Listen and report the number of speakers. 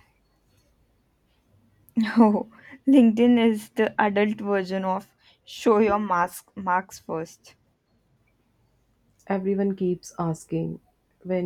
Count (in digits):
2